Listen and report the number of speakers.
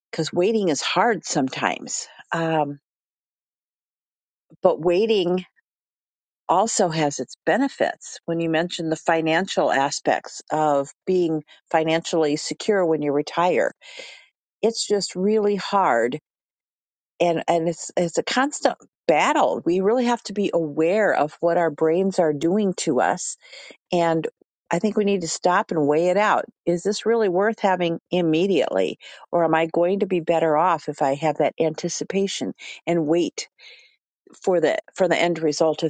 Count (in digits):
1